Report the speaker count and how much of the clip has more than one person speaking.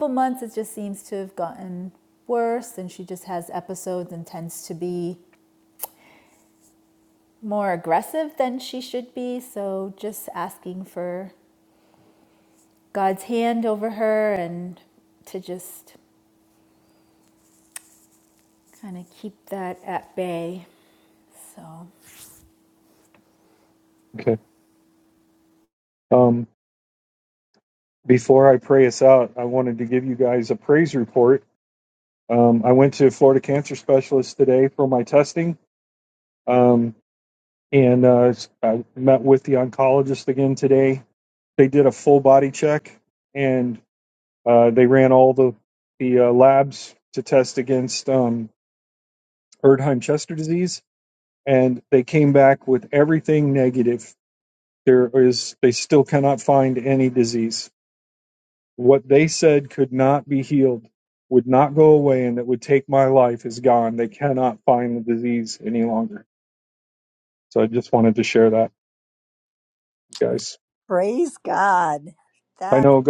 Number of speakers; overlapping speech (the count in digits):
3, under 1%